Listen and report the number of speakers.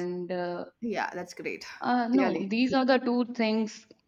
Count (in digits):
2